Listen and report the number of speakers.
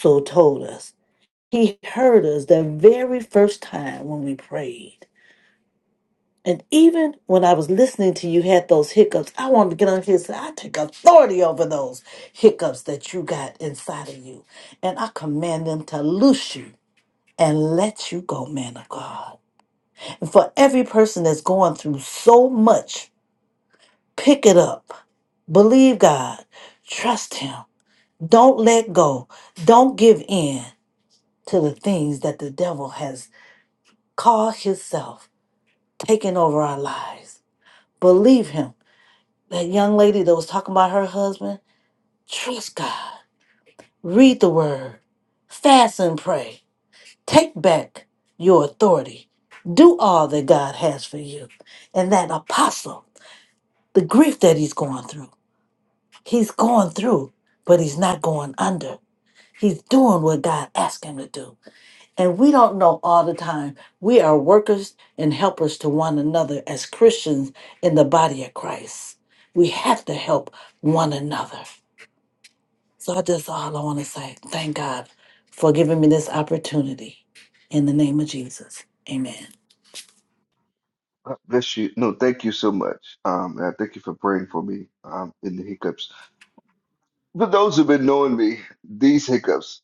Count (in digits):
2